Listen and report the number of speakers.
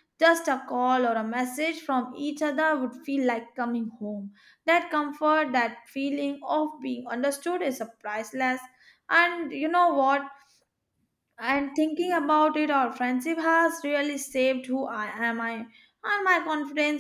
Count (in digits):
1